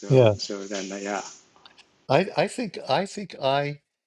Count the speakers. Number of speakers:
two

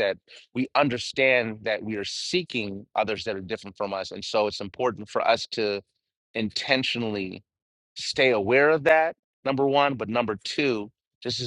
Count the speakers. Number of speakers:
one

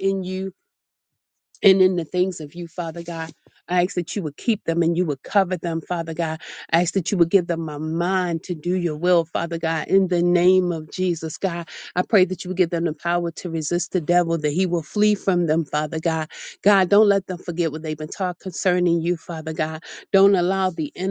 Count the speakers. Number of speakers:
one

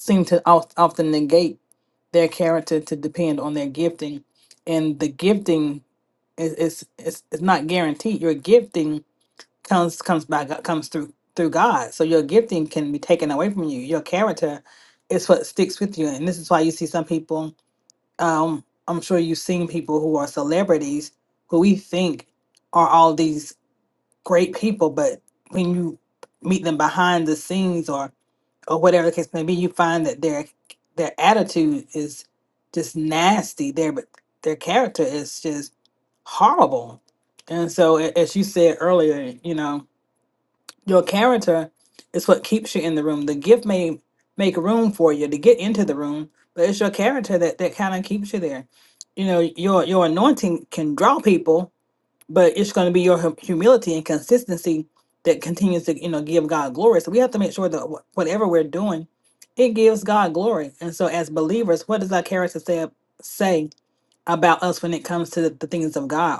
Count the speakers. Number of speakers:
one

